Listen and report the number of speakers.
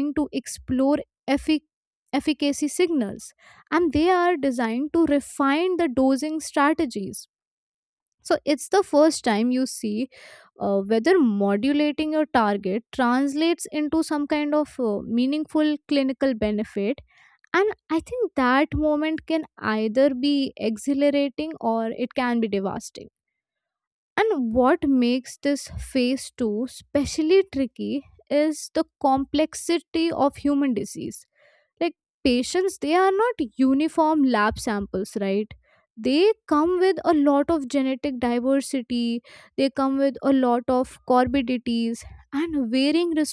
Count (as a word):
one